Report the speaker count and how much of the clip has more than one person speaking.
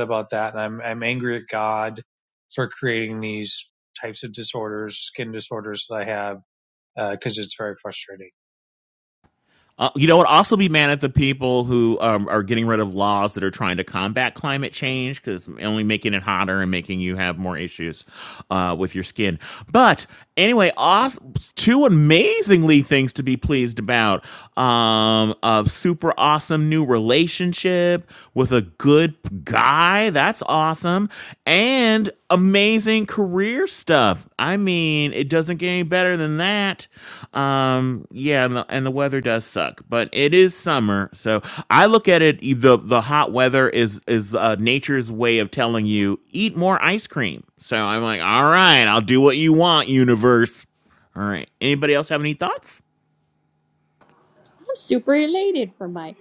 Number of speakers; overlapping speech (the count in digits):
3, no overlap